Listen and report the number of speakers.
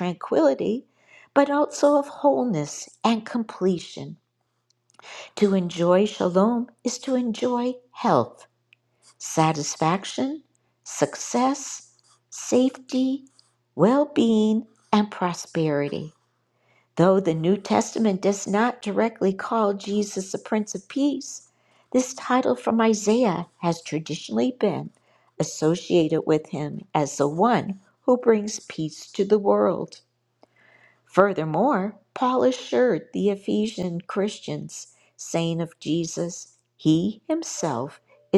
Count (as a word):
one